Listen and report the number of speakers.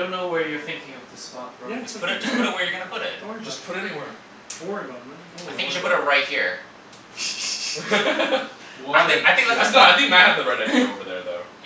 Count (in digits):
4